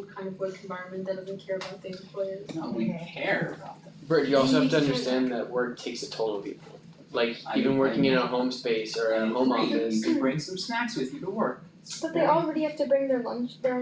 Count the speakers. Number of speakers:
four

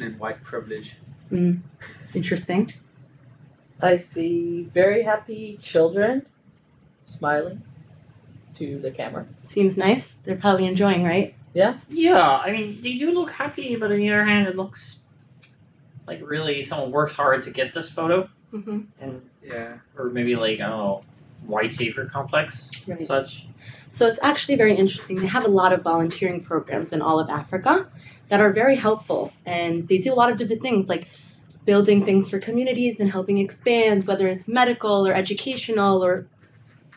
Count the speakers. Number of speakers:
four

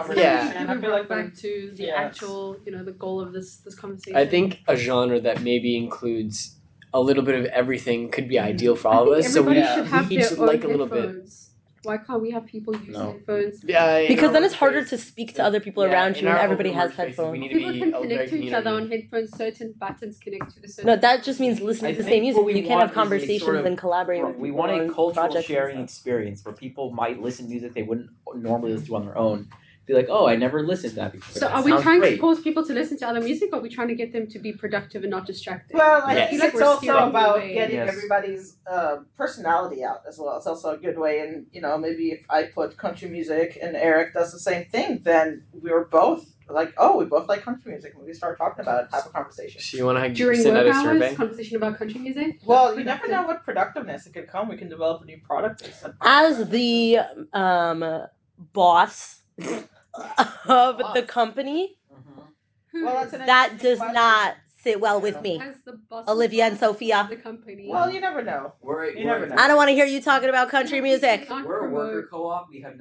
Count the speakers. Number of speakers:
five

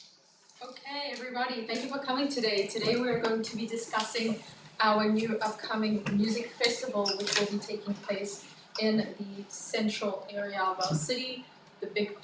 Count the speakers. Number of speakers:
one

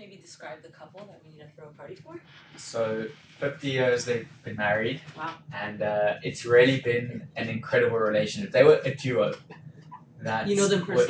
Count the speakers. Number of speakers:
two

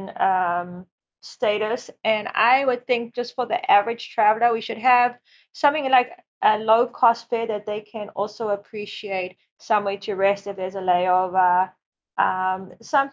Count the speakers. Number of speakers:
one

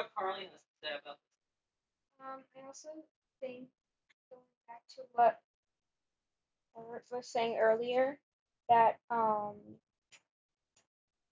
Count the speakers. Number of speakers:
two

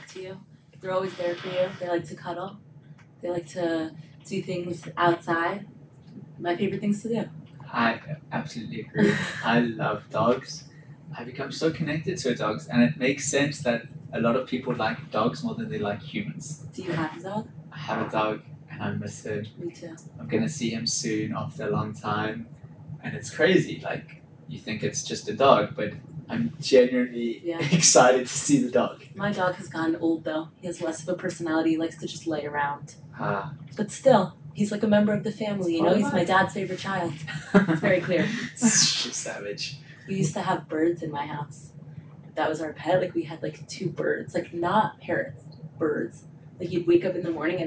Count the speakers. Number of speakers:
two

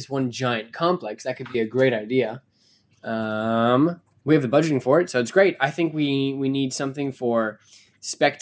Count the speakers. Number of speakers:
one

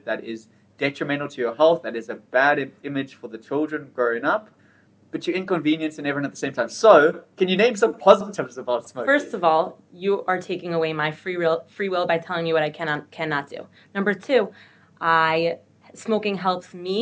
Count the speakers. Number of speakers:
two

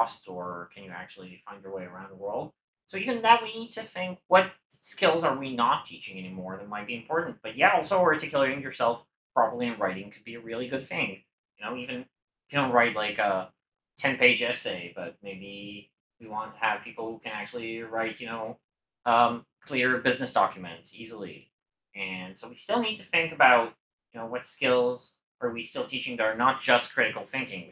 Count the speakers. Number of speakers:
one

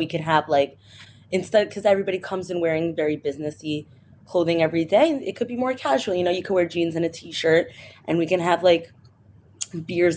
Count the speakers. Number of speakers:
one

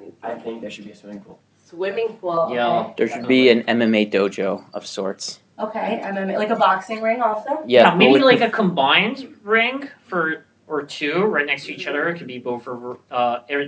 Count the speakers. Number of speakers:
four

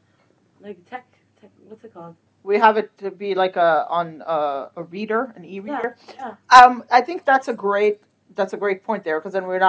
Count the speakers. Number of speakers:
two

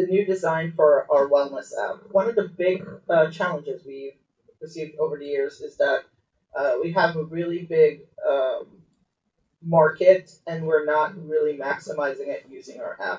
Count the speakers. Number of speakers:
one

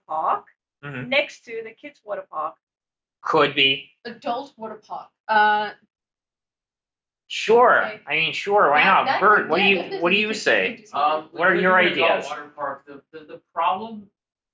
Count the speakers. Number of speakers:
four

